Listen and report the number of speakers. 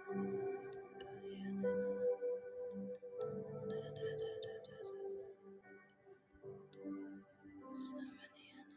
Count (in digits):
0